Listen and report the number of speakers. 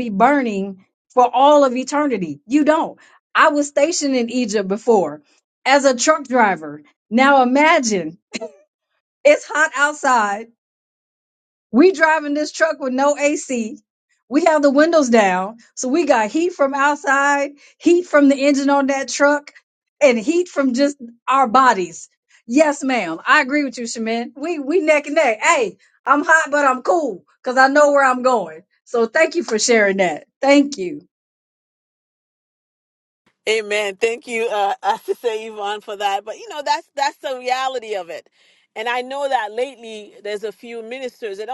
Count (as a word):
two